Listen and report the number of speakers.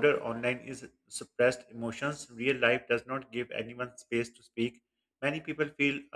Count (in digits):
1